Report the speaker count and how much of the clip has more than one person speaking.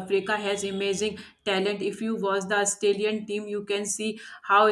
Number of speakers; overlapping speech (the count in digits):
1, no overlap